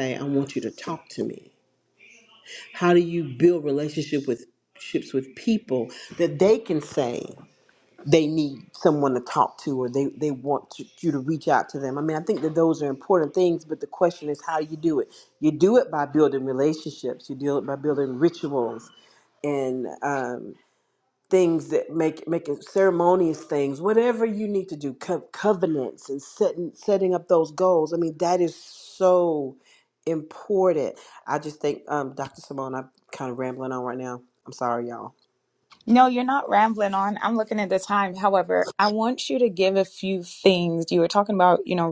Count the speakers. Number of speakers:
two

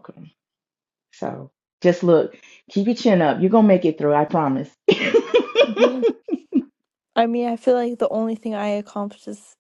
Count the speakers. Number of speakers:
two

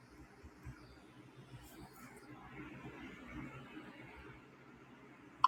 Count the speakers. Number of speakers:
zero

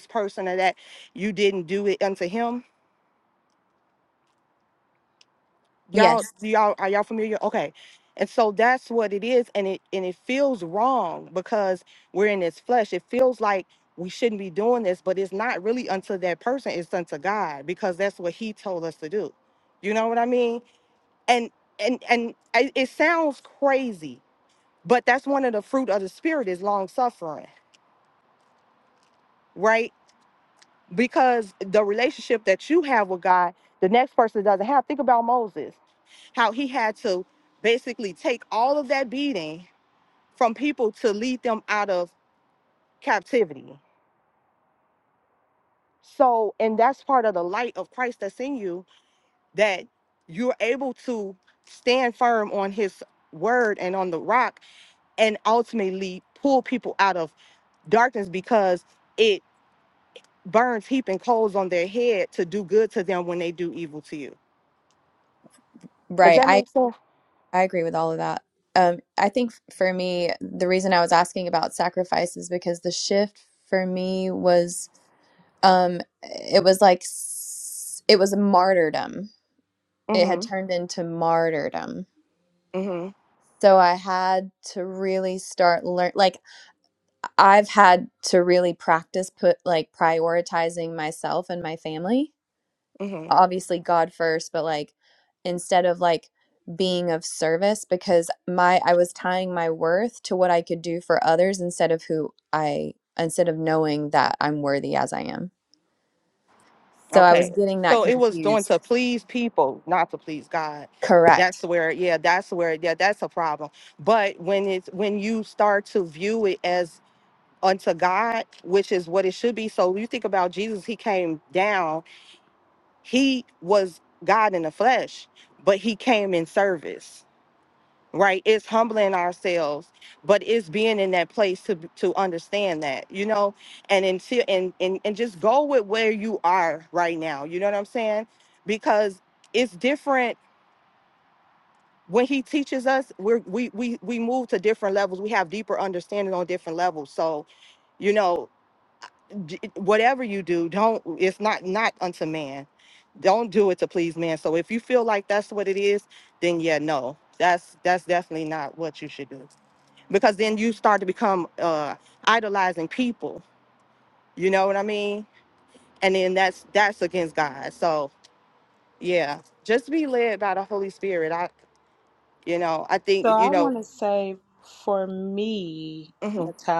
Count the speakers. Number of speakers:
three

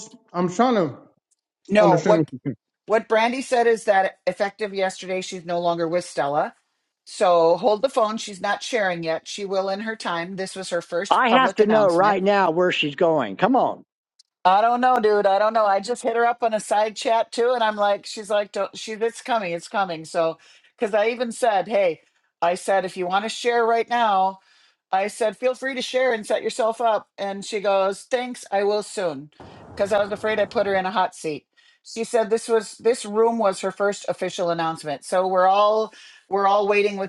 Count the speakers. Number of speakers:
three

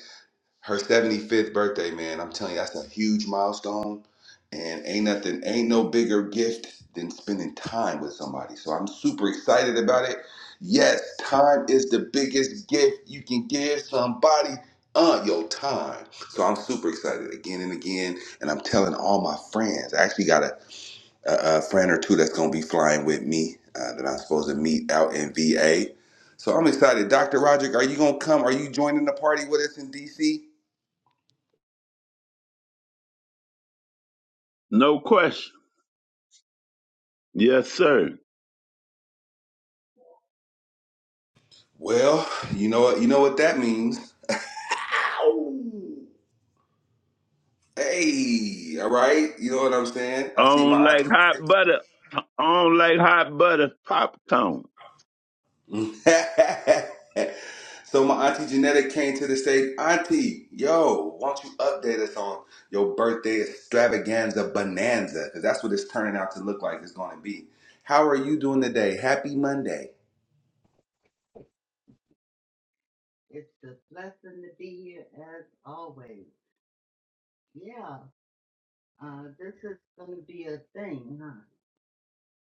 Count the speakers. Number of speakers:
three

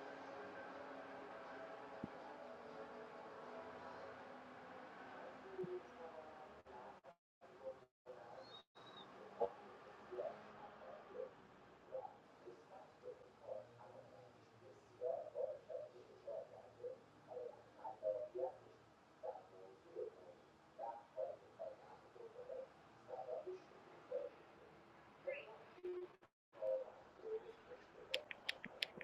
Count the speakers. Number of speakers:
zero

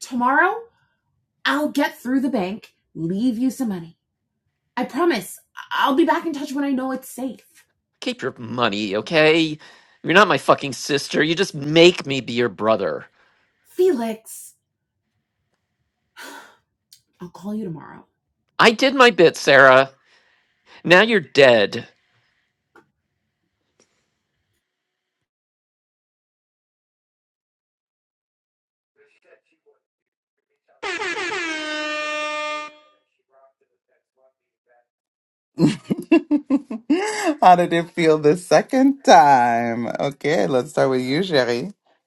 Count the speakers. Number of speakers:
three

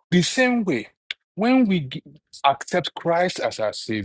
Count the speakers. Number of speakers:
one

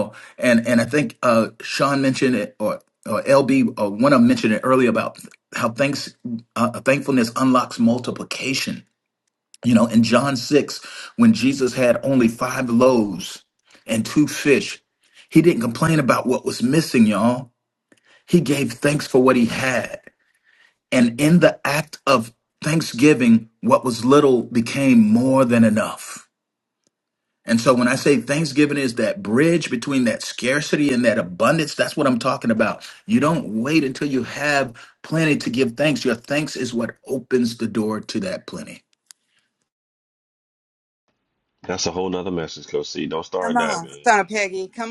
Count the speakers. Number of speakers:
three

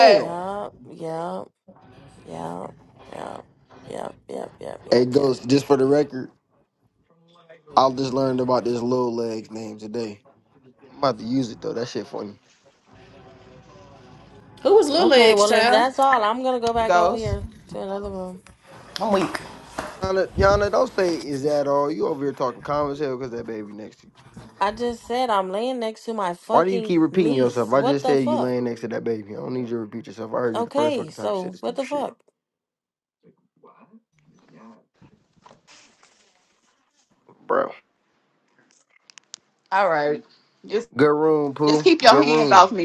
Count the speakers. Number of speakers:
four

